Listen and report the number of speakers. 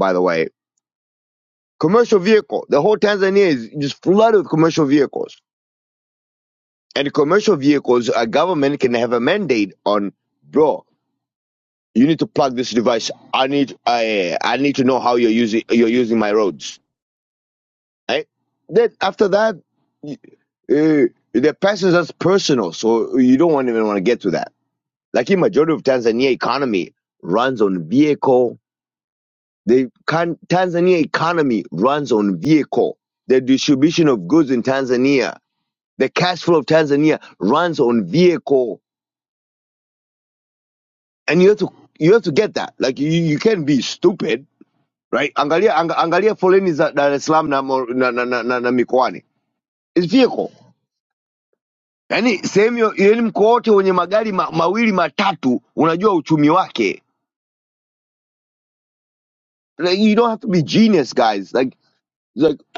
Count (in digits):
1